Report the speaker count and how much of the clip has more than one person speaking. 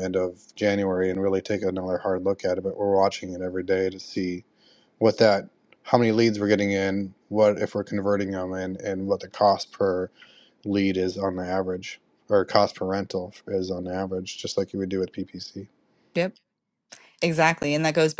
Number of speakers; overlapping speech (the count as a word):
two, no overlap